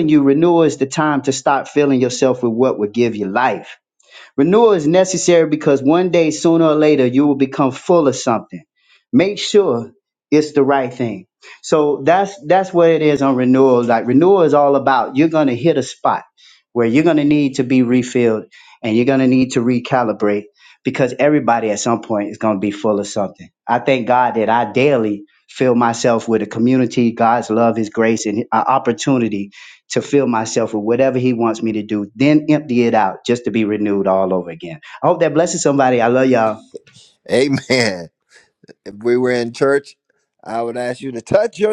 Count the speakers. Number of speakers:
2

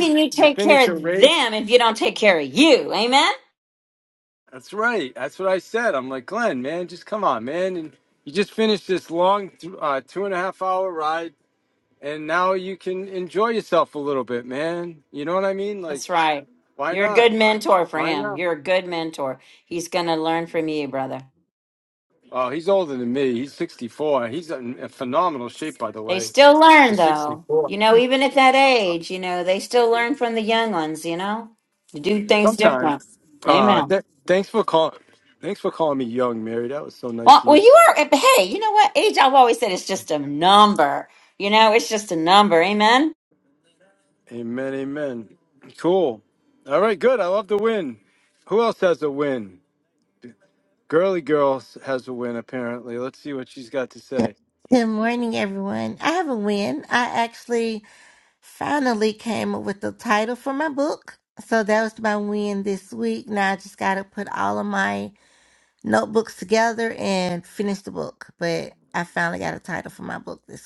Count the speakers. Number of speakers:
3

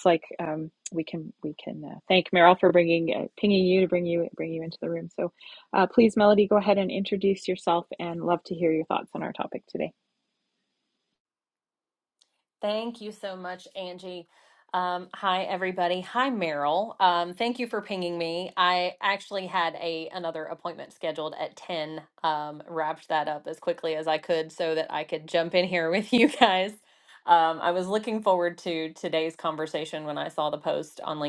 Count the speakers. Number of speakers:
2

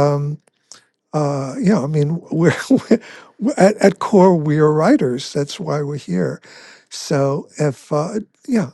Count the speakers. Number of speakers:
1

